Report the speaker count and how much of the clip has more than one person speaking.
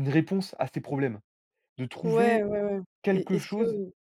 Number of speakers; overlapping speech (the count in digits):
2, about 28%